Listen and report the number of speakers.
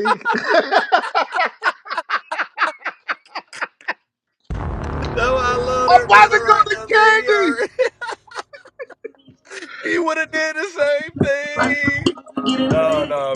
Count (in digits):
2